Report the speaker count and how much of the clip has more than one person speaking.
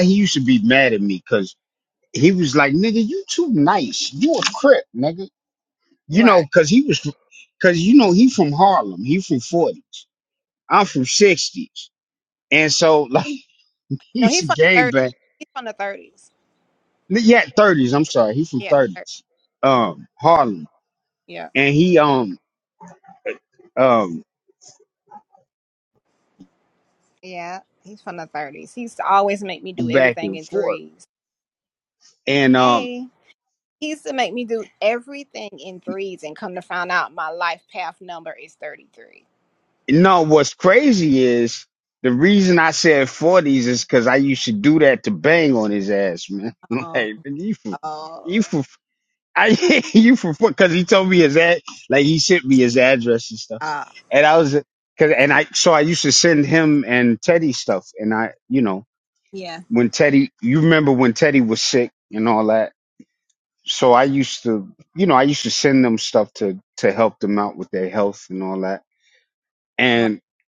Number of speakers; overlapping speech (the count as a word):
two, about 5%